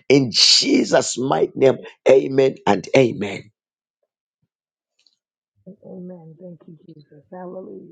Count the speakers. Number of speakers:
two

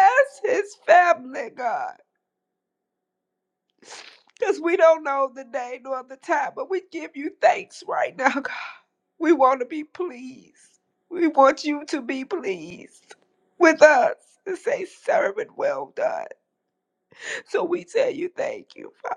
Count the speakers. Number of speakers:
one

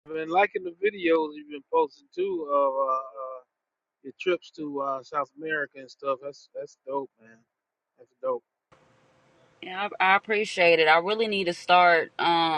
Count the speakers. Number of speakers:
two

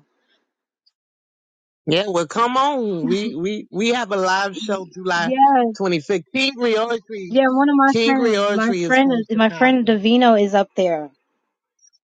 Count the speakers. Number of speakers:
two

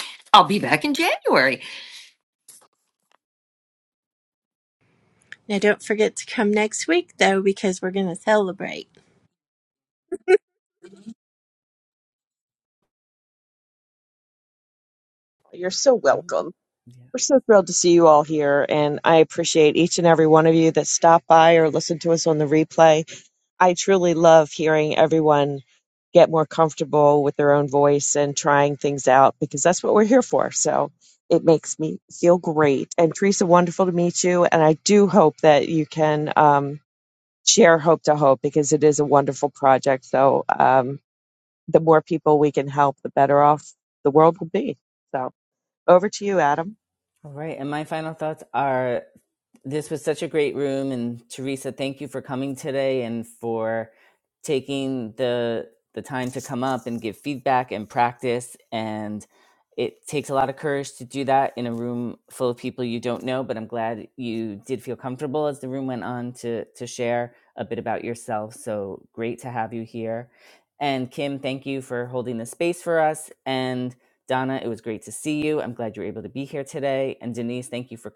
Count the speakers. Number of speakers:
four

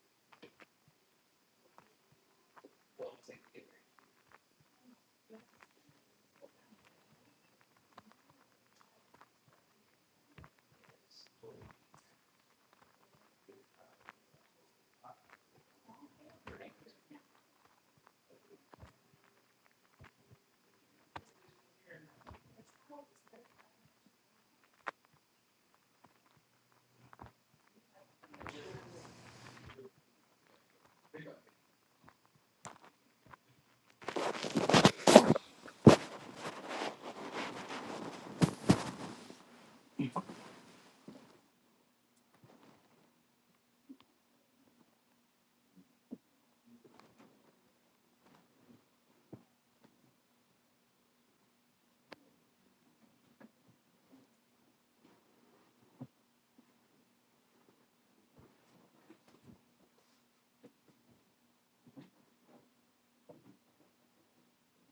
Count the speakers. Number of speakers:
zero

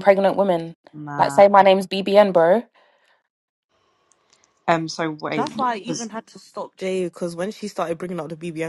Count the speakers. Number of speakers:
three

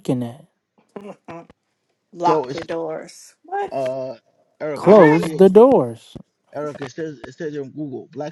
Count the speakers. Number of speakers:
three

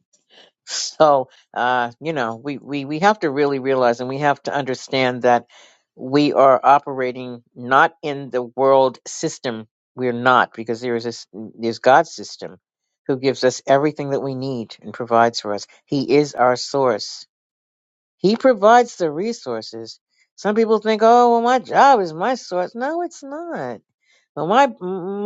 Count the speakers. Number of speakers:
one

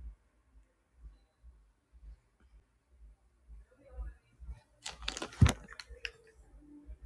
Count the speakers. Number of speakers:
zero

